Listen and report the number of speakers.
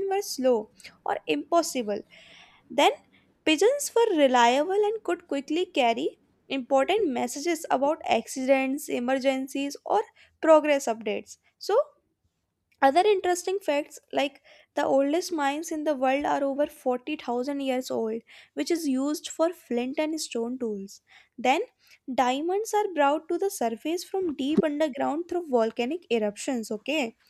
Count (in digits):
1